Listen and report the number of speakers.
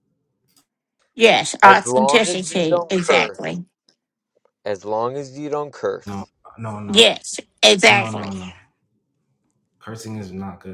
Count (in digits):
3